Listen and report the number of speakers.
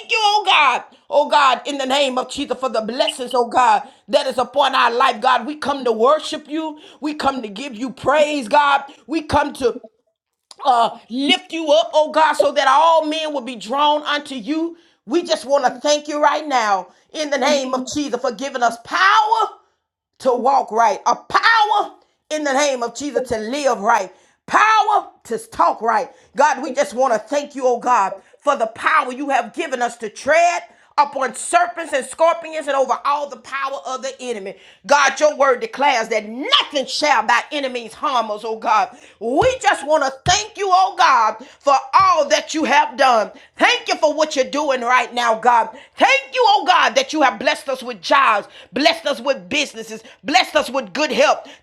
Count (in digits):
1